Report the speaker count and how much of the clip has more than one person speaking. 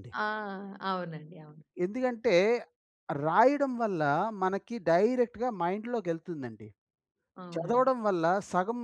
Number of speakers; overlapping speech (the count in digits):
2, about 3%